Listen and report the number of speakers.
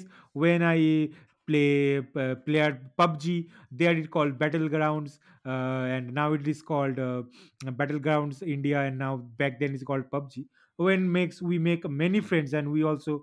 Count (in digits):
1